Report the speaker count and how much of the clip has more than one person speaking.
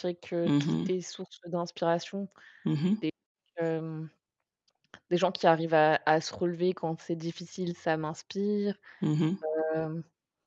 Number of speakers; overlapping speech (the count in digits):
2, about 4%